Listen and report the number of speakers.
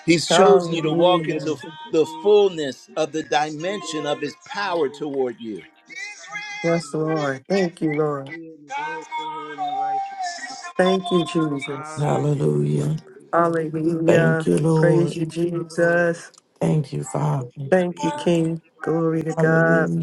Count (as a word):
four